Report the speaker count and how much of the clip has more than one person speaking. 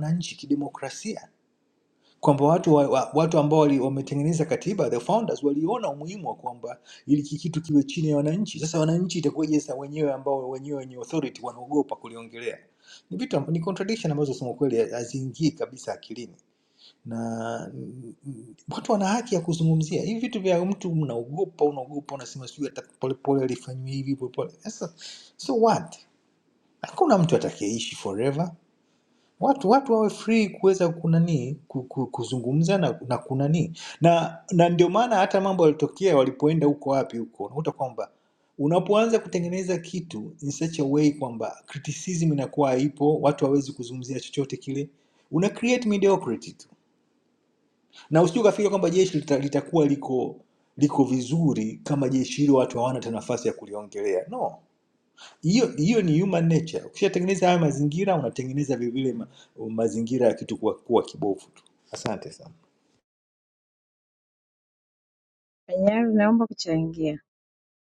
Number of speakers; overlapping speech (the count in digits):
2, no overlap